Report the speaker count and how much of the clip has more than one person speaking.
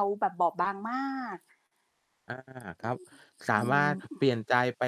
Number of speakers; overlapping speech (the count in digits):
2, about 8%